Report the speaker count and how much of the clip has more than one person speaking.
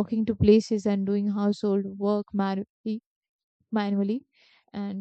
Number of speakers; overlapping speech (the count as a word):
one, no overlap